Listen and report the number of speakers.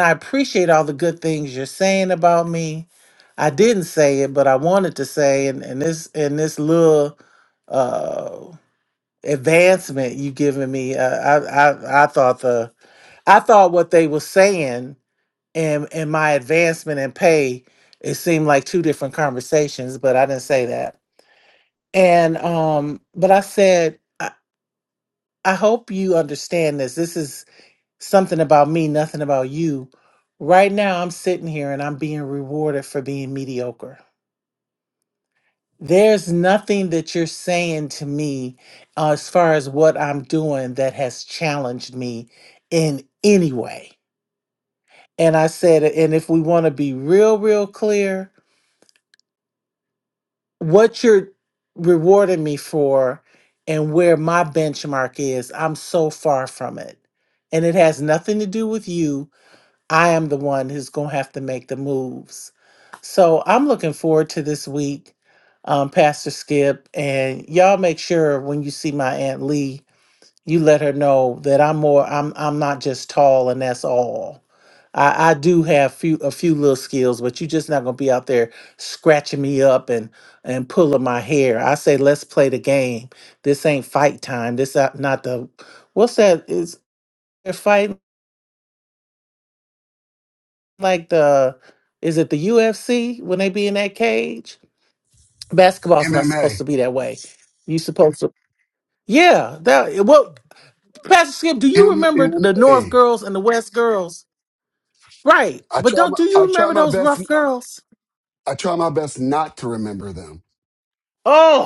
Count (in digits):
2